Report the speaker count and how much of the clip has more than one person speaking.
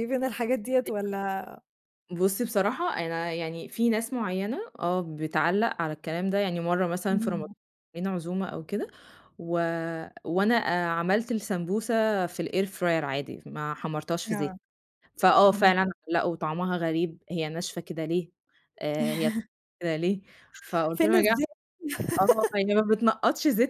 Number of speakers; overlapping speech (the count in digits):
2, about 6%